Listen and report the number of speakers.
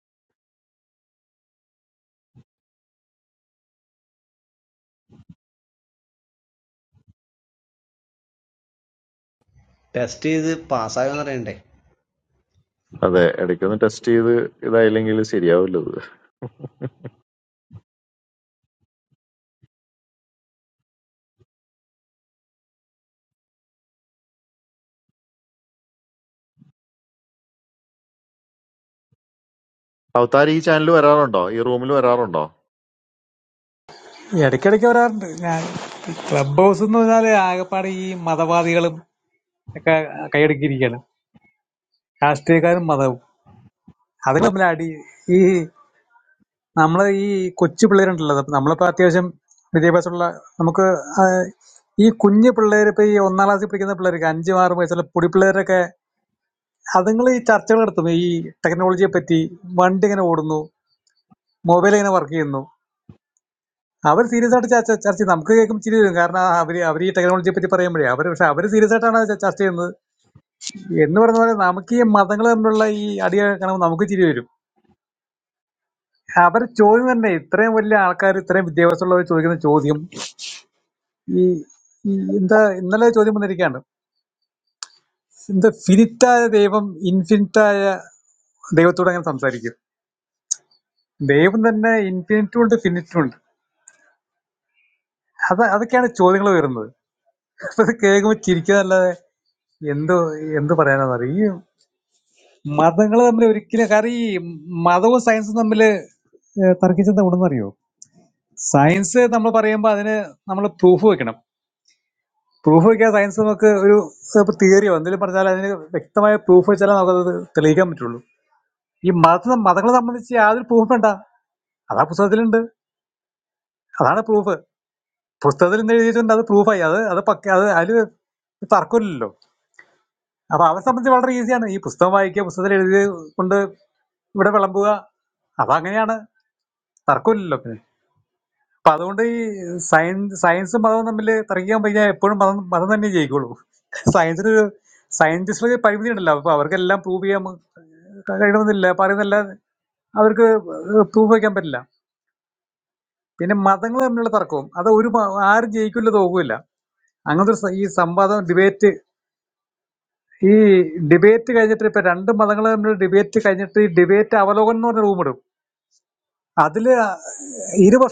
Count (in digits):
3